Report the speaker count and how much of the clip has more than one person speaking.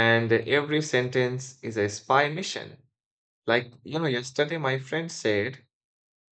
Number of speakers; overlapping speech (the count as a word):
one, no overlap